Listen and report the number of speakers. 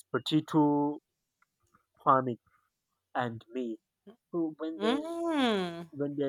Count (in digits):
2